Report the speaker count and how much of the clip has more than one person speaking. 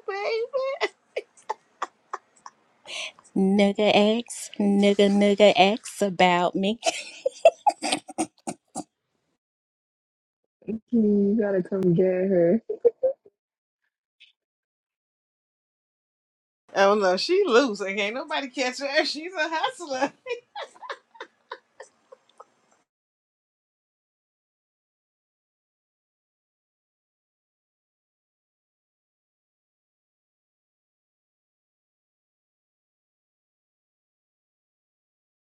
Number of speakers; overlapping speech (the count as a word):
three, no overlap